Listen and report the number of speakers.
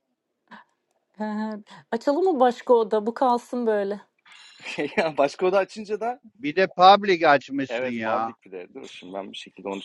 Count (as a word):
three